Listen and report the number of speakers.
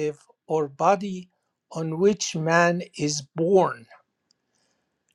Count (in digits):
1